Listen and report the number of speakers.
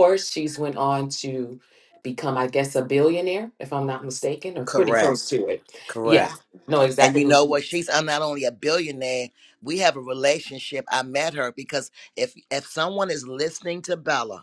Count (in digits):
2